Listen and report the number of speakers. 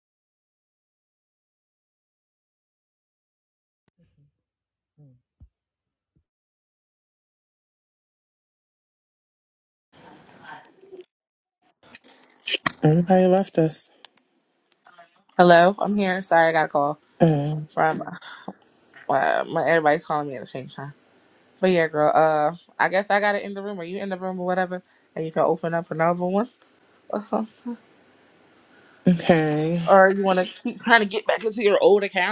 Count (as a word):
two